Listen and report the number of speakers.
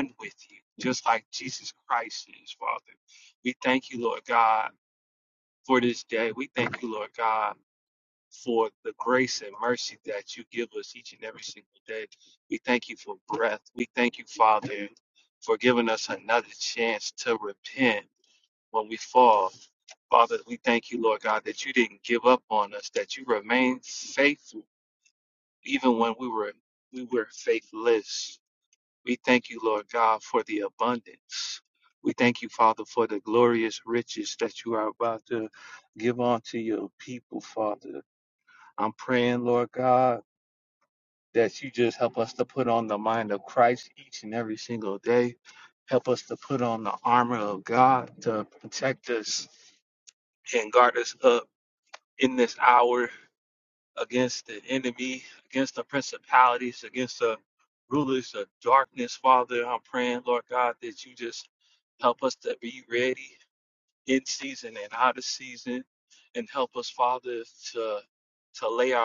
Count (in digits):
1